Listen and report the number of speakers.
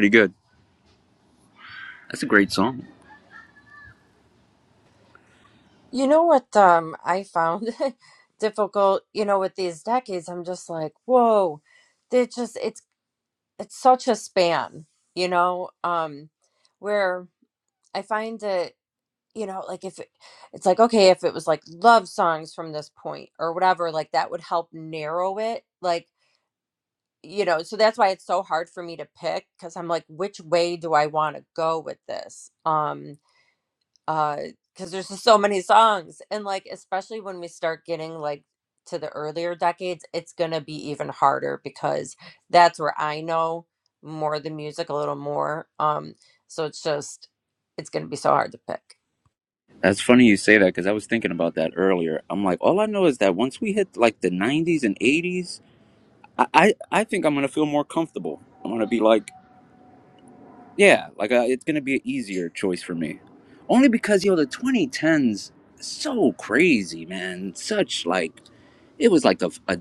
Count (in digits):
2